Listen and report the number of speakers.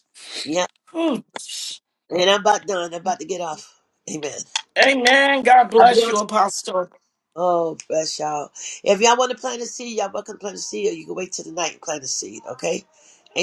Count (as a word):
two